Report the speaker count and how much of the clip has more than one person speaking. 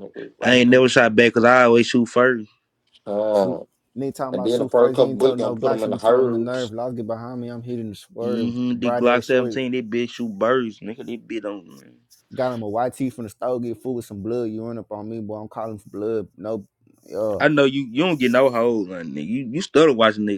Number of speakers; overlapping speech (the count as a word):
three, about 21%